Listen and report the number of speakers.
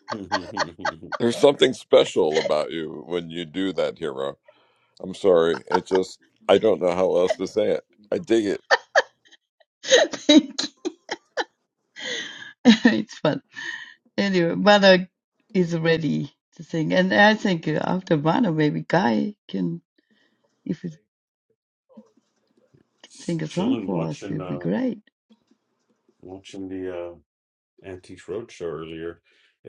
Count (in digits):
3